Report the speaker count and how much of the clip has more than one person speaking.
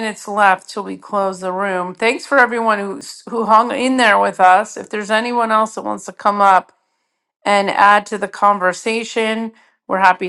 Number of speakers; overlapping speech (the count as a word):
one, no overlap